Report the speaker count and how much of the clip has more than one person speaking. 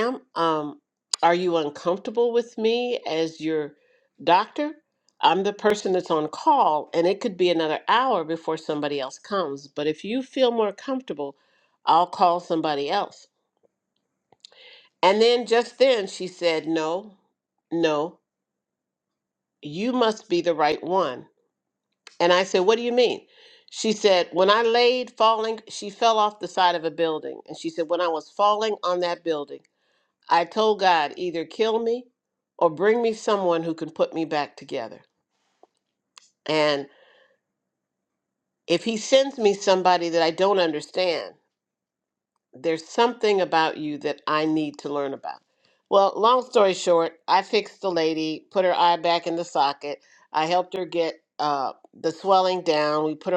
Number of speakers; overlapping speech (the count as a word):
one, no overlap